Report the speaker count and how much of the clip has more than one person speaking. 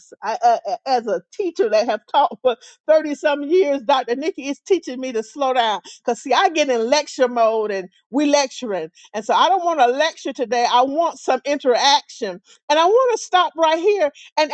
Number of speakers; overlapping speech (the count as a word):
one, no overlap